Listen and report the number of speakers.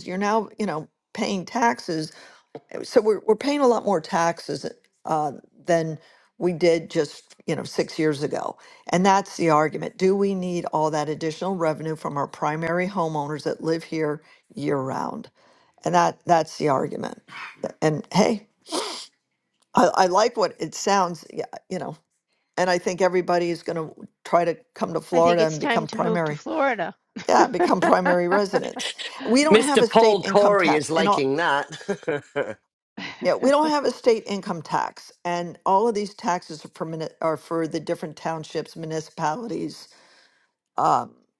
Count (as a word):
three